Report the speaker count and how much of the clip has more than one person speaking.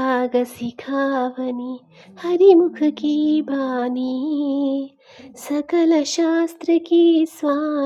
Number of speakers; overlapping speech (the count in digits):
1, no overlap